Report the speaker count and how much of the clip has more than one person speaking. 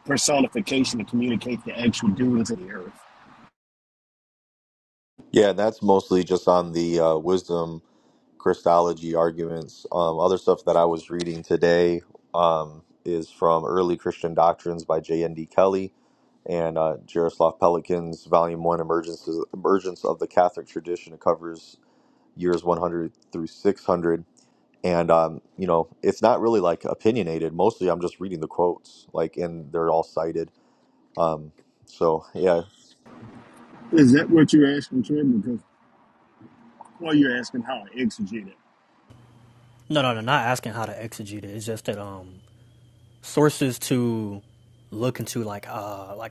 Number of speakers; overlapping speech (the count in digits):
3, no overlap